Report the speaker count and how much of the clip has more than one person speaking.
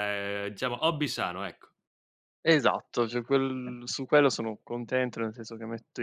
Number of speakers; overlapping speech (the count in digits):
2, no overlap